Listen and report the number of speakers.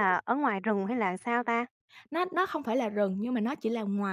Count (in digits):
2